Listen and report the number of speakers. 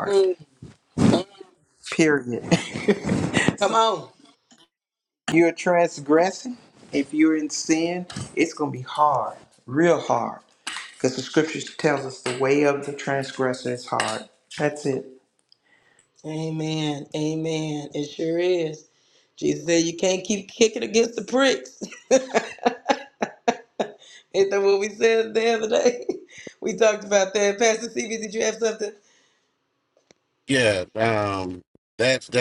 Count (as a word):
three